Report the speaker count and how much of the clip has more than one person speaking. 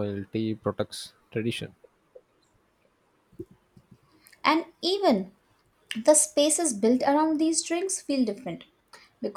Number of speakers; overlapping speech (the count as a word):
two, no overlap